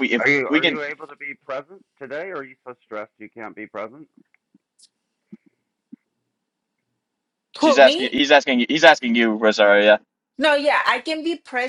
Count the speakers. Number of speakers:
3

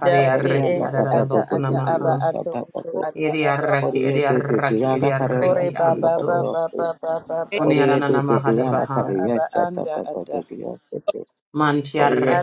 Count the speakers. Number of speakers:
3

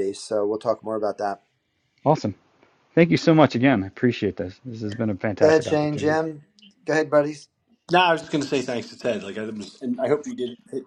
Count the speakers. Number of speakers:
3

